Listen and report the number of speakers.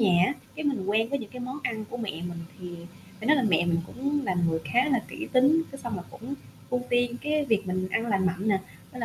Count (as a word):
one